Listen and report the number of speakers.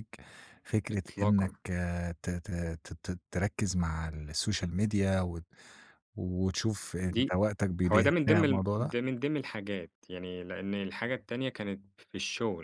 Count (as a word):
two